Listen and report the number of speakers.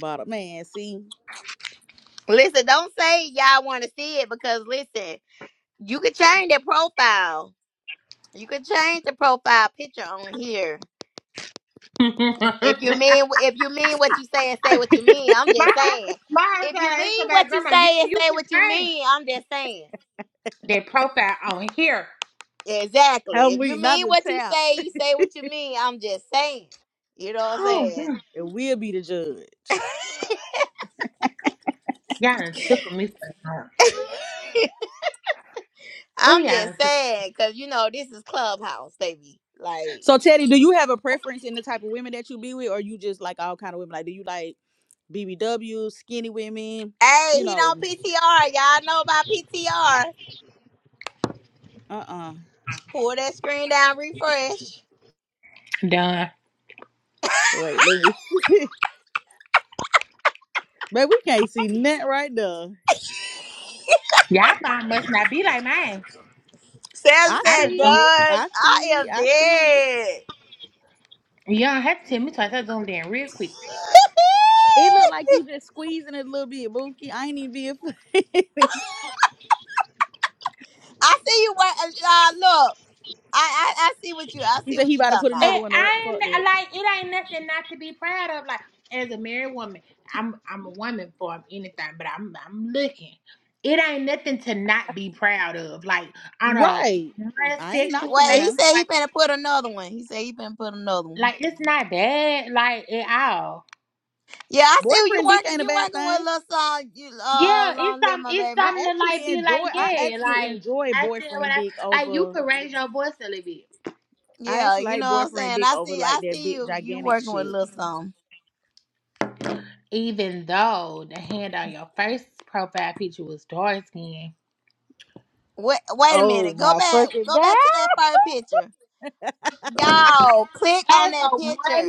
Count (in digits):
3